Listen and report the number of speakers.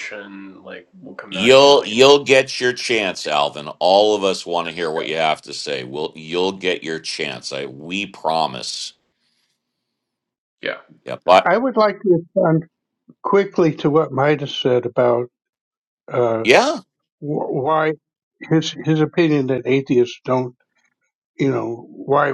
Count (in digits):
3